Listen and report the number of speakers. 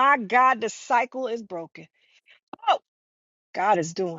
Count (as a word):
one